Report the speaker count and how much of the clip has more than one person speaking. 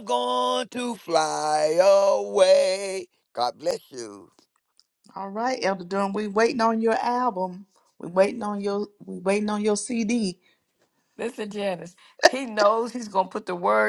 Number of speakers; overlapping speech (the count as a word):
three, no overlap